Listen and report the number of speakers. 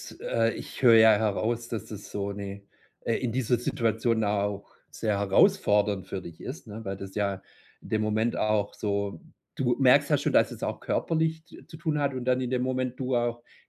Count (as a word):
one